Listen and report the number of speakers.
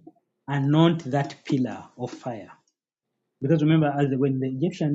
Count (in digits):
1